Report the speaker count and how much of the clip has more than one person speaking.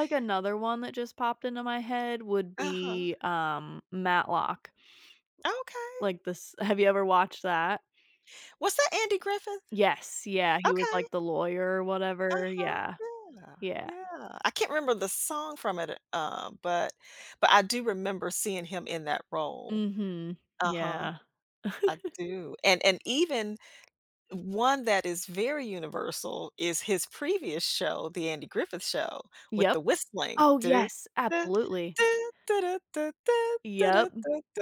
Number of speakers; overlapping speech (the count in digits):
2, about 7%